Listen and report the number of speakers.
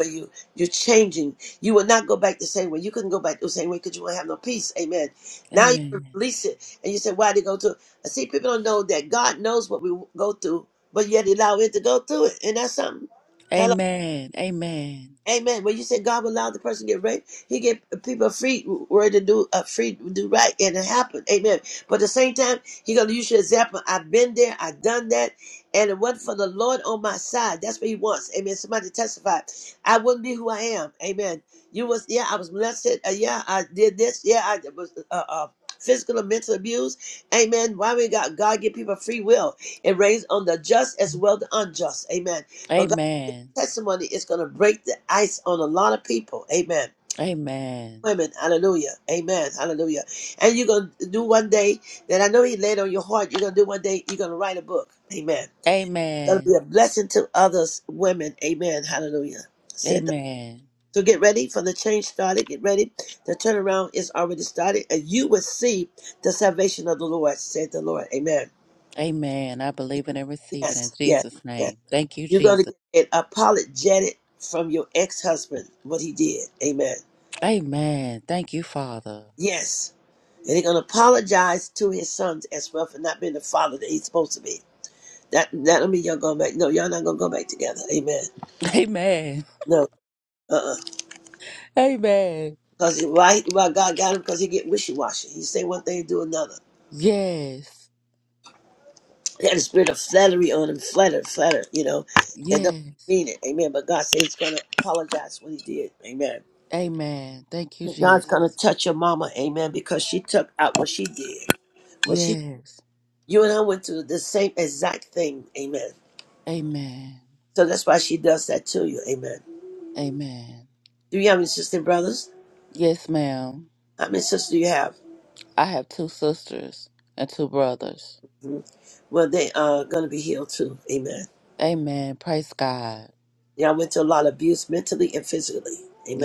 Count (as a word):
two